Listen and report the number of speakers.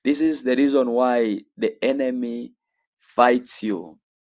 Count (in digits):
1